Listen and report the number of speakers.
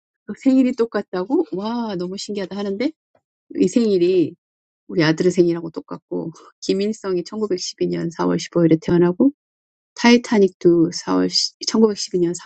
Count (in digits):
1